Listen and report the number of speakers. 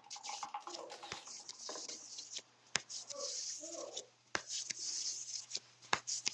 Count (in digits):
0